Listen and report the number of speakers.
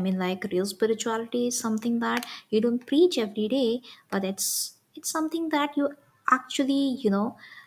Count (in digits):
1